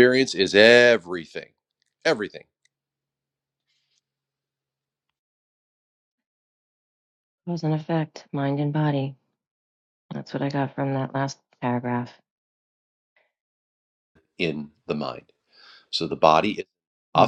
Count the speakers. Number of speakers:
2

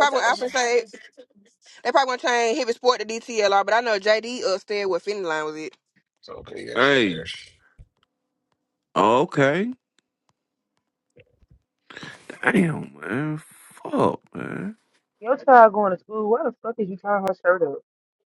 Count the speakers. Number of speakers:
4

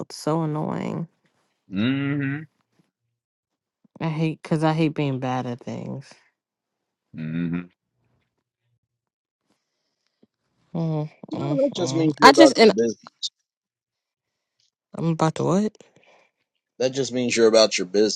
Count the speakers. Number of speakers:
3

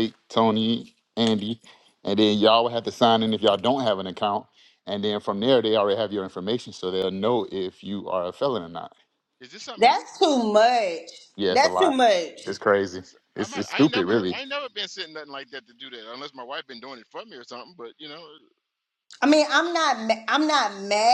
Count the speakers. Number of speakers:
3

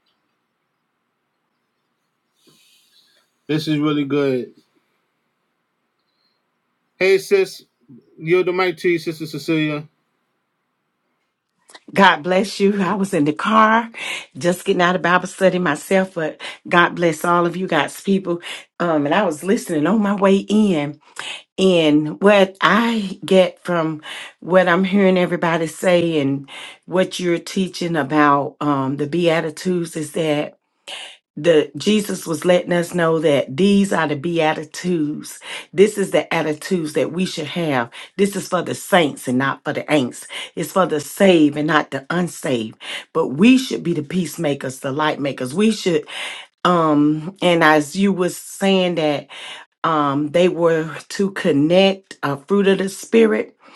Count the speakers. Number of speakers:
2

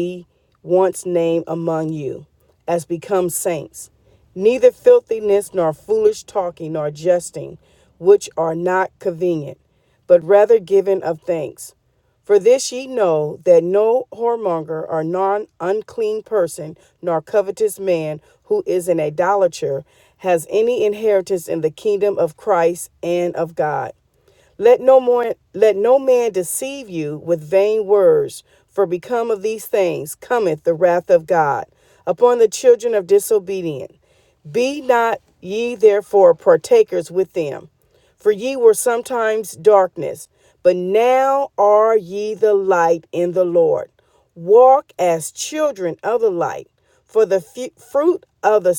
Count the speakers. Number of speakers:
1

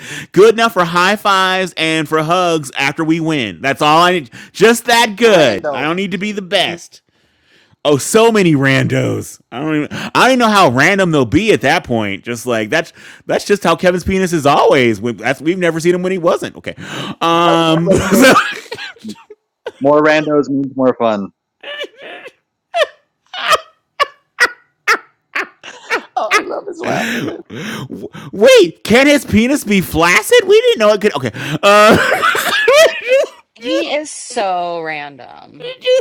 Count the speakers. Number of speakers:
4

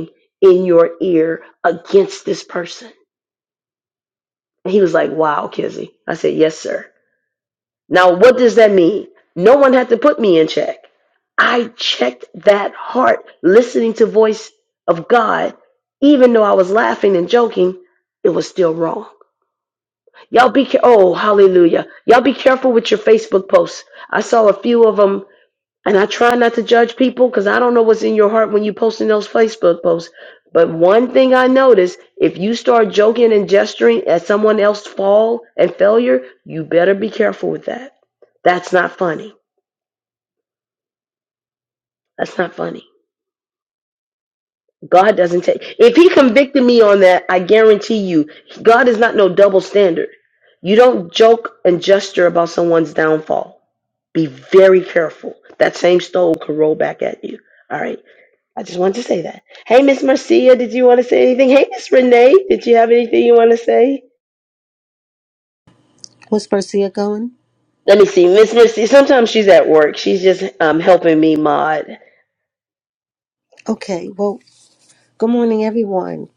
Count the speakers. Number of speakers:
2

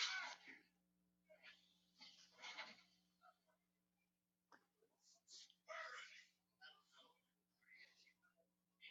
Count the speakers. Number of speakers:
0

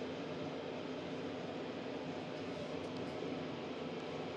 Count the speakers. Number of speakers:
0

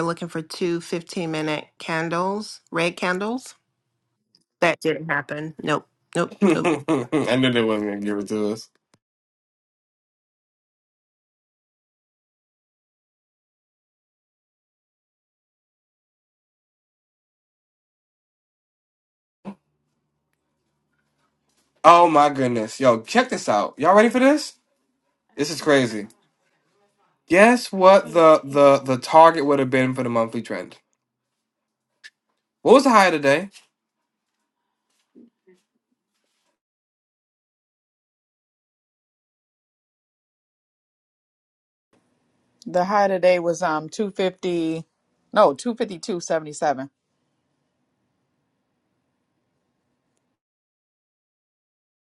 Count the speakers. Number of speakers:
3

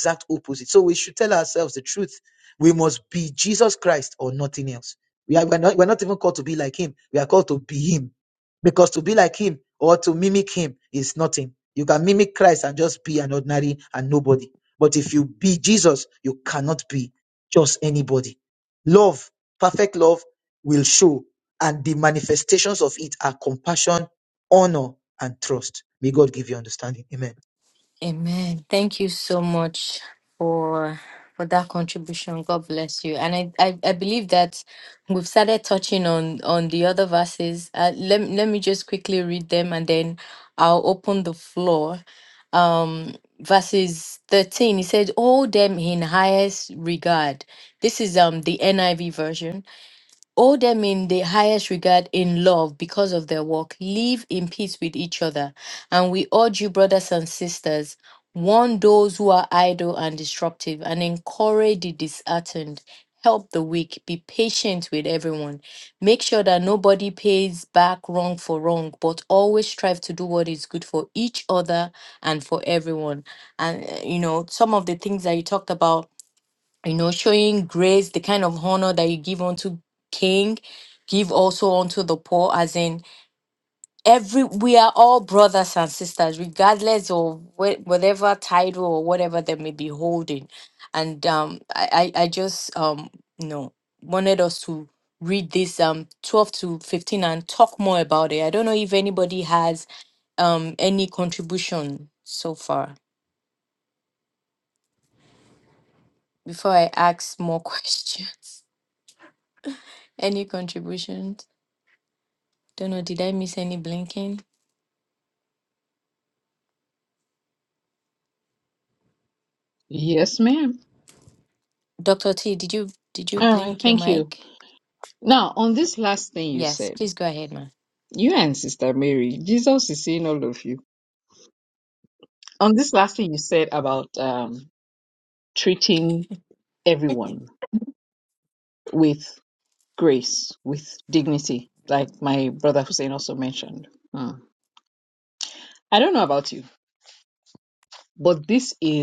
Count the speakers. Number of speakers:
3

